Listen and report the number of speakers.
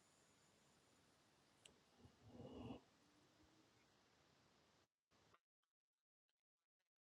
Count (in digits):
0